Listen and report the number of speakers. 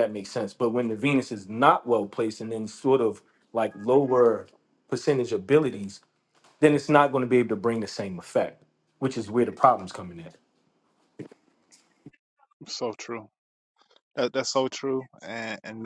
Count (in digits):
2